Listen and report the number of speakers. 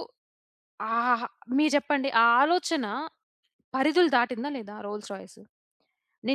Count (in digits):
1